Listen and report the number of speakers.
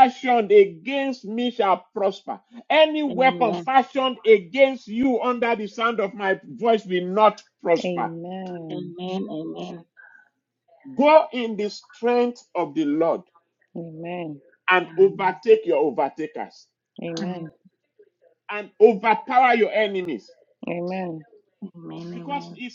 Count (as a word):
three